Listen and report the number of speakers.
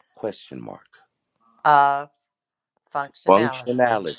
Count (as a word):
two